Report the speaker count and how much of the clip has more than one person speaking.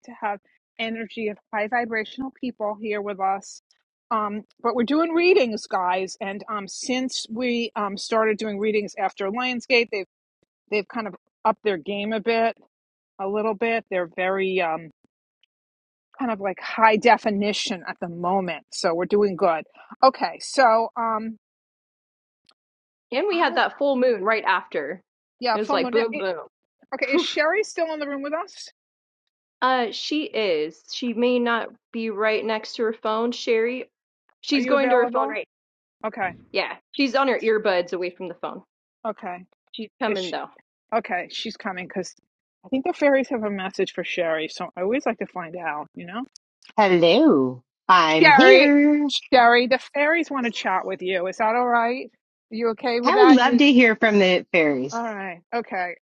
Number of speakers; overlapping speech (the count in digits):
3, about 6%